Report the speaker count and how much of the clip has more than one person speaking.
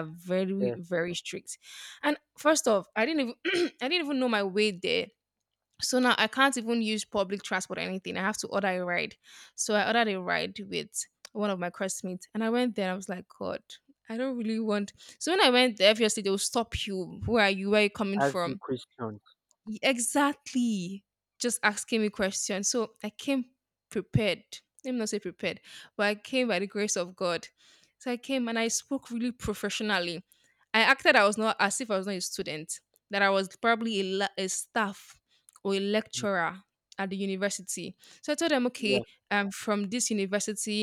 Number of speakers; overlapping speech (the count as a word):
two, about 2%